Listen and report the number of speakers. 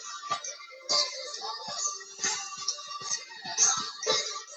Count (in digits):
0